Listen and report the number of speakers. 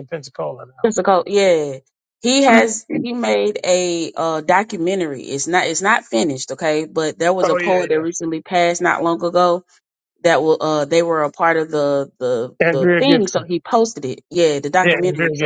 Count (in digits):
2